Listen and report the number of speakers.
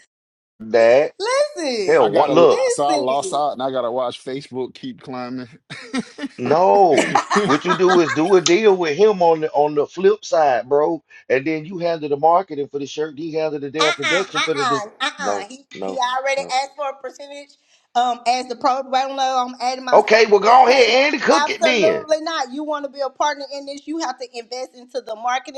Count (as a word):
three